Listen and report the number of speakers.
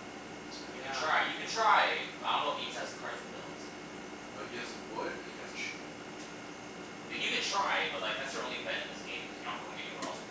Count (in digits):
2